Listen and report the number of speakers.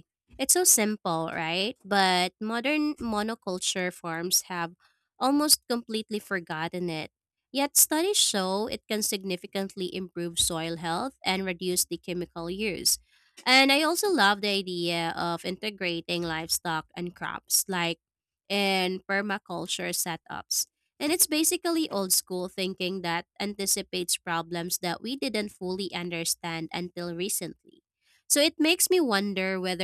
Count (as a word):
one